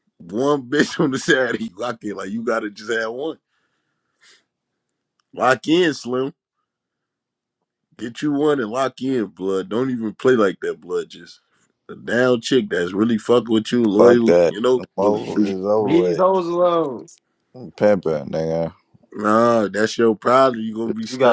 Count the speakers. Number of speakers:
3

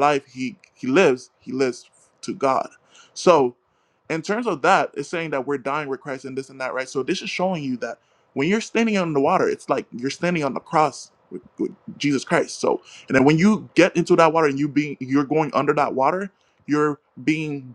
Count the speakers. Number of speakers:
1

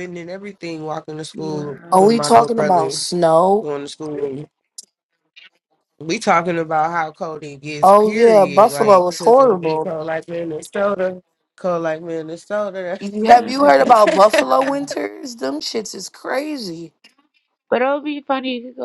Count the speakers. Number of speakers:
3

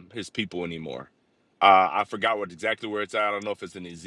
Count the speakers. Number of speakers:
1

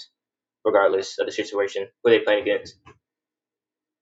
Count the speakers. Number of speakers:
1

